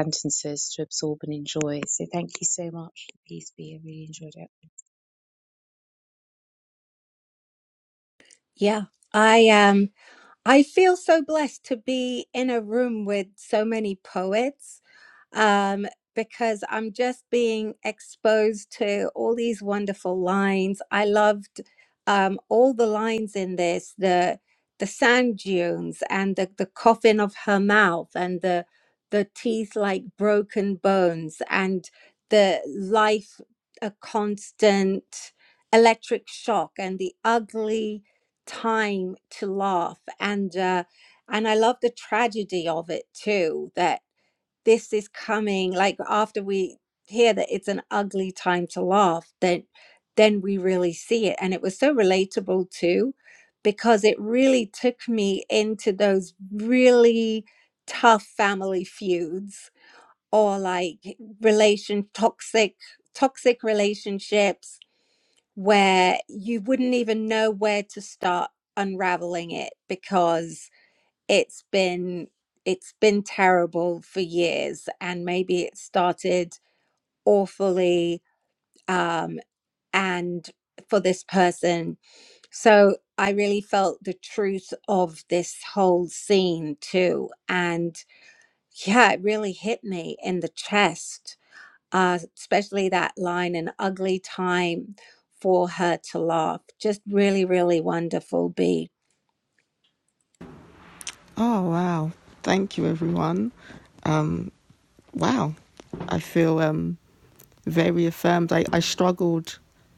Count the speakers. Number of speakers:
3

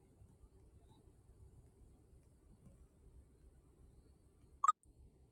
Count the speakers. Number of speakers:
0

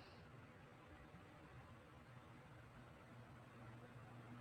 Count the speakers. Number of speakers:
0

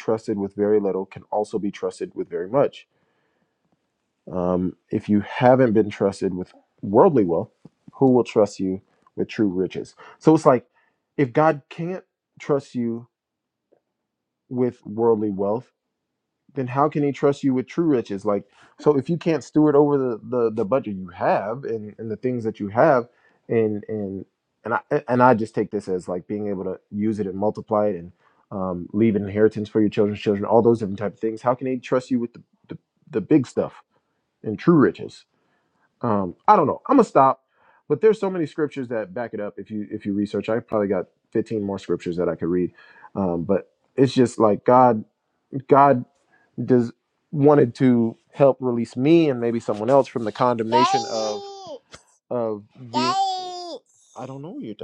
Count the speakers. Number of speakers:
1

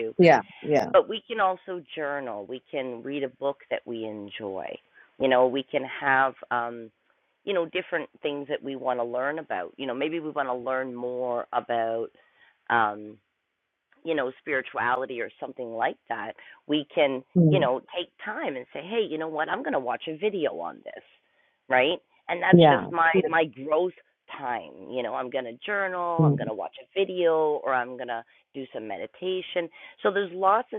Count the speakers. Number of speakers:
2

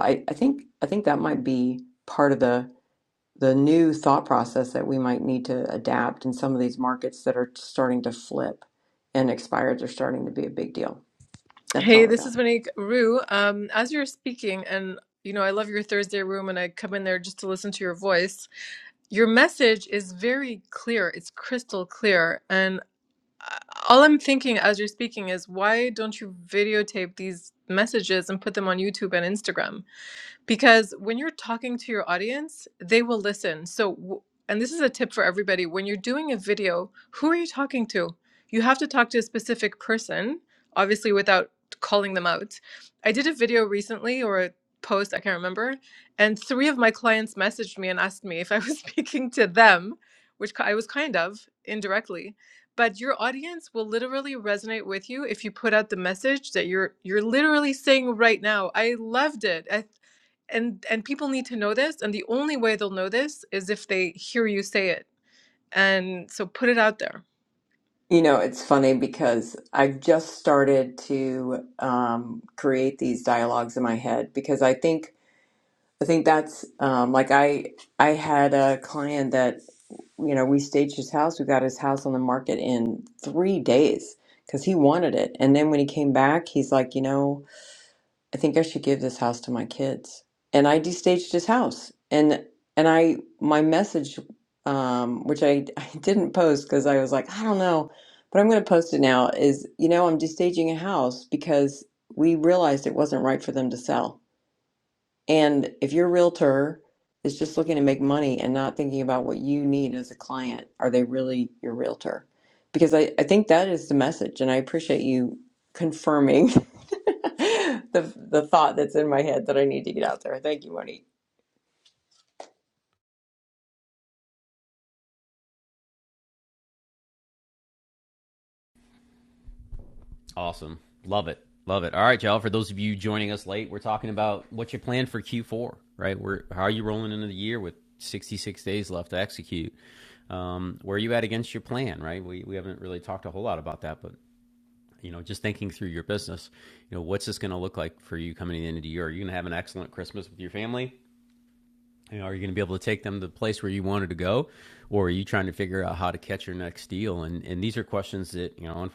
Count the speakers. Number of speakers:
3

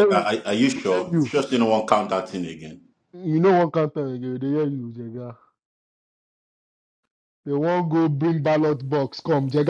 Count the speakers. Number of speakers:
2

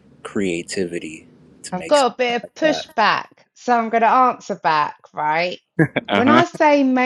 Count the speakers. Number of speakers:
2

